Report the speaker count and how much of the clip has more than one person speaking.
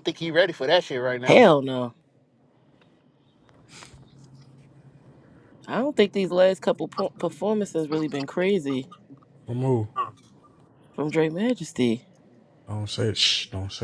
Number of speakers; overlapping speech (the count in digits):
3, about 1%